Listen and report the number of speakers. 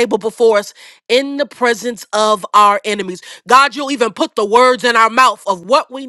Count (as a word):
one